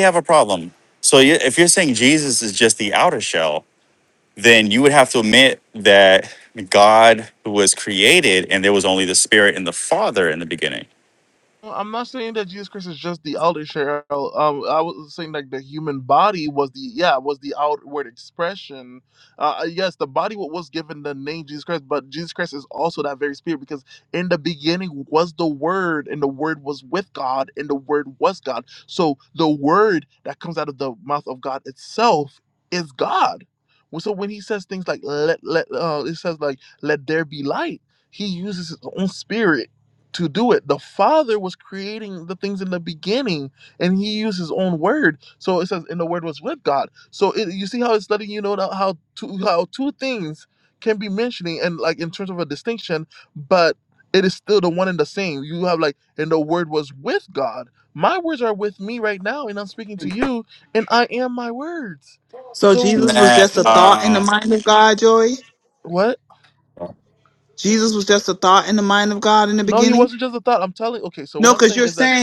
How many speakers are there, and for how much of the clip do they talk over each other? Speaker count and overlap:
three, about 4%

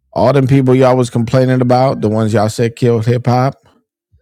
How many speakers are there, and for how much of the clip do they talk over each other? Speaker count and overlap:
one, no overlap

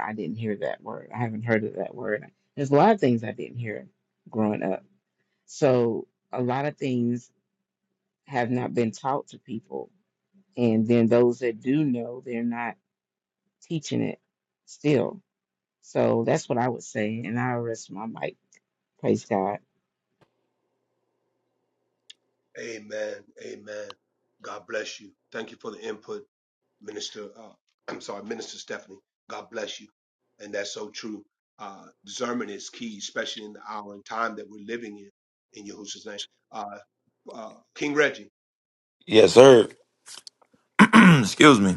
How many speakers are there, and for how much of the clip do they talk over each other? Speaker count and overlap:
three, no overlap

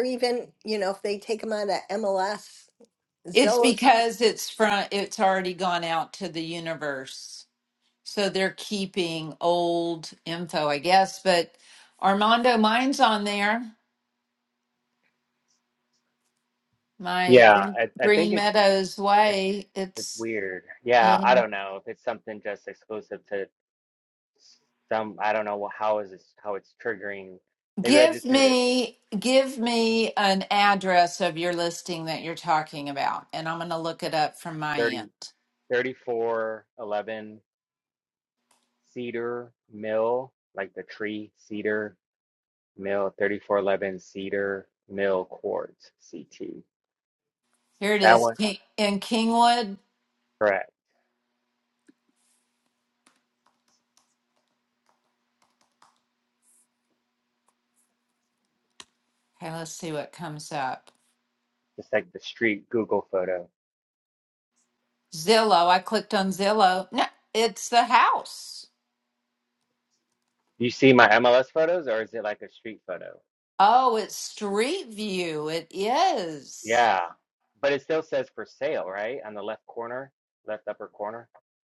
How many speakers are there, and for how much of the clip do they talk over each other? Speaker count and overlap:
three, about 4%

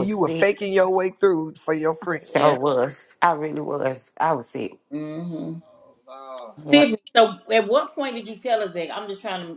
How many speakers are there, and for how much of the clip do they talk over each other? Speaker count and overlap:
three, about 13%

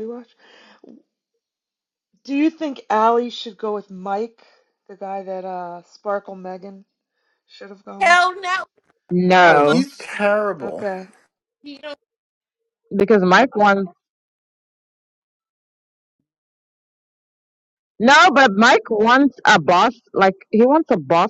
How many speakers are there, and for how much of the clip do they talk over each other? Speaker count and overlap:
four, about 4%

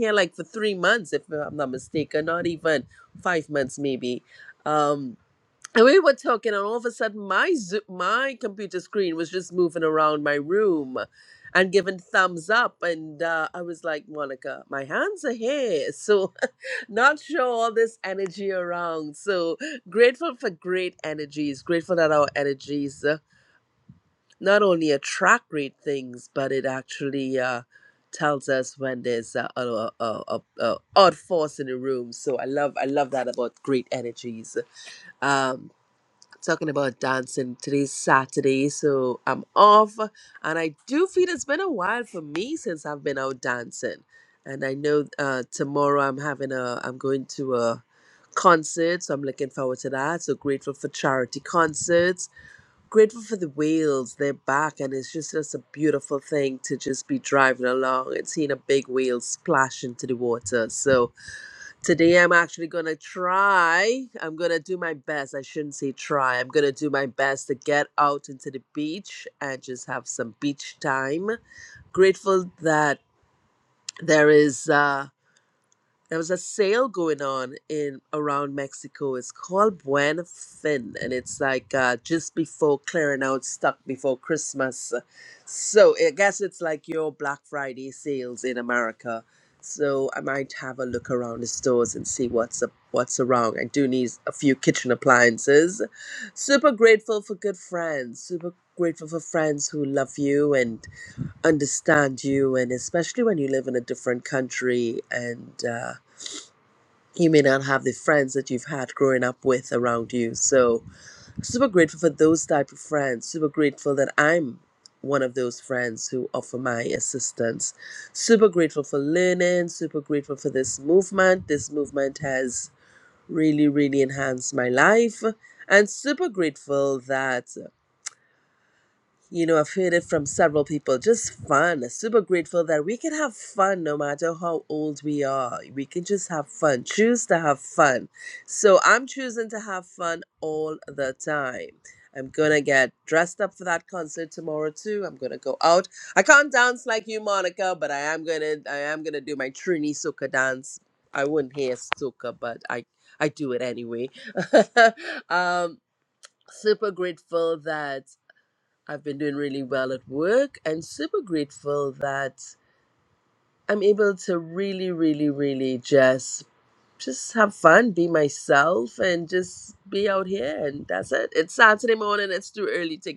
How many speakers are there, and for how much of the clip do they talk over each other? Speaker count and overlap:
one, no overlap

